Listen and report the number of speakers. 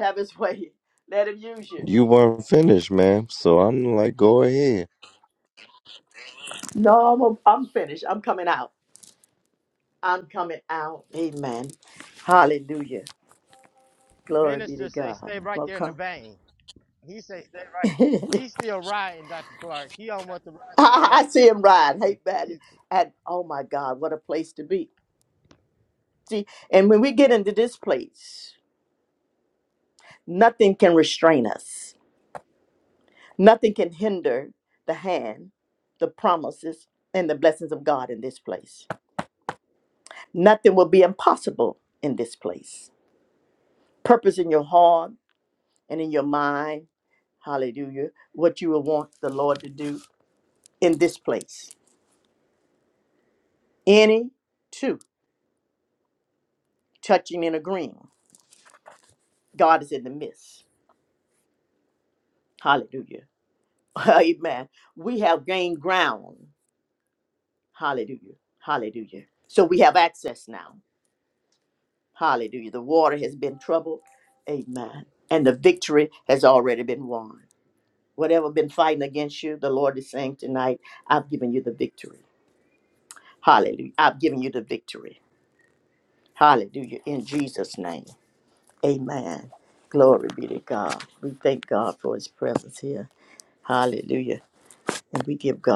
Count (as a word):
three